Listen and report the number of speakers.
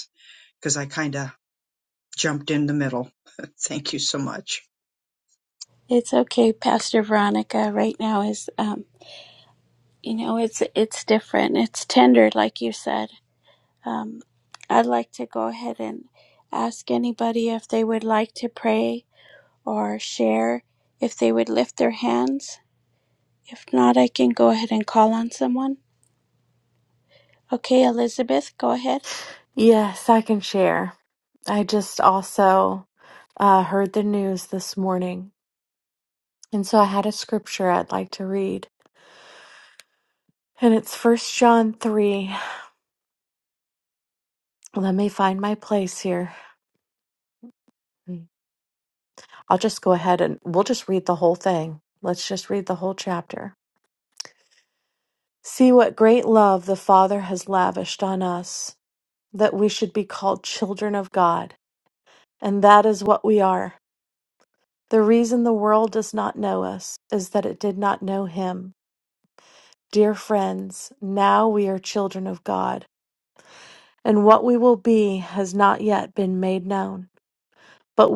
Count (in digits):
3